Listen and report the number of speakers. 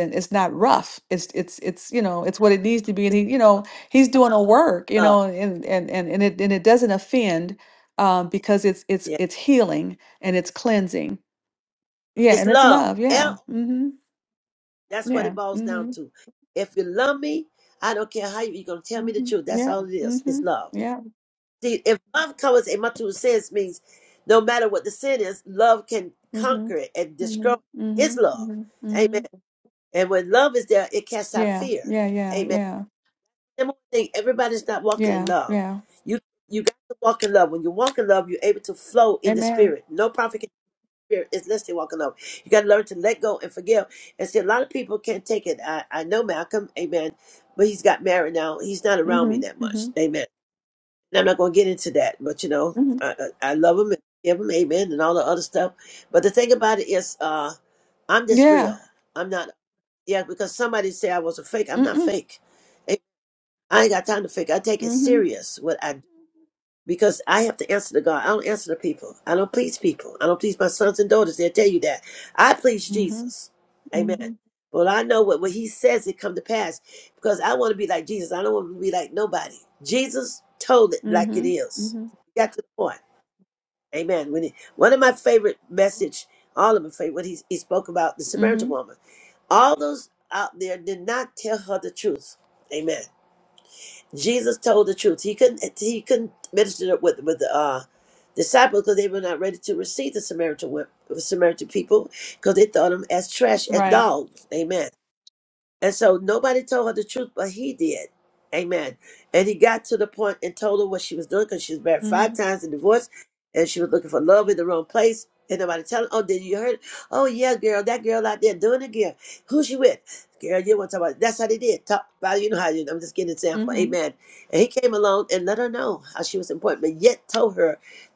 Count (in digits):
2